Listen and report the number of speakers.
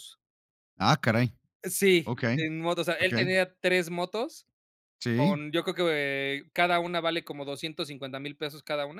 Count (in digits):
2